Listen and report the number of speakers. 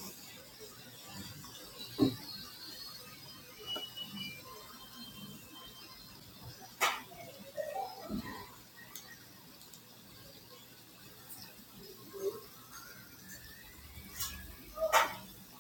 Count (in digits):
0